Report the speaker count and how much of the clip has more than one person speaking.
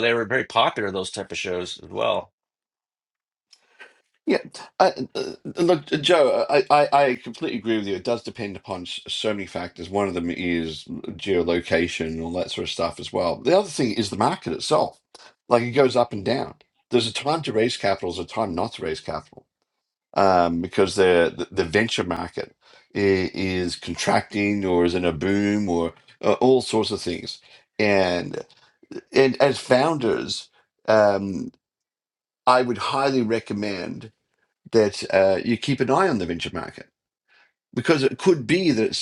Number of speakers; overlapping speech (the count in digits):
2, no overlap